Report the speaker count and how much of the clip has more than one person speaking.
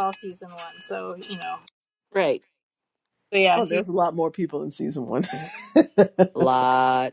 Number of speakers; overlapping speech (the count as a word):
three, about 4%